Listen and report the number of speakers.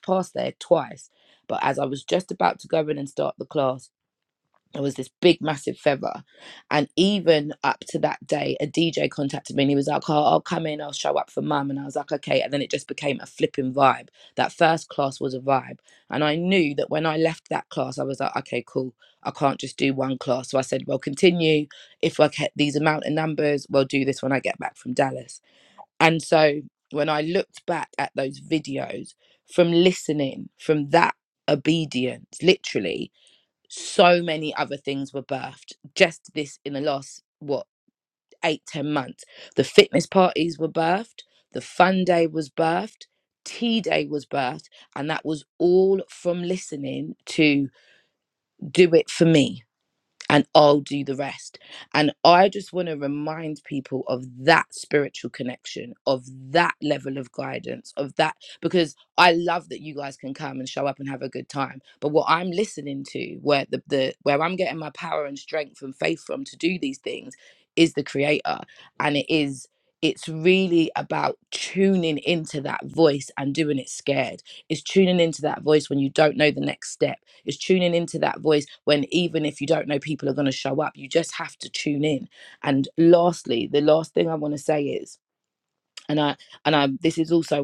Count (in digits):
1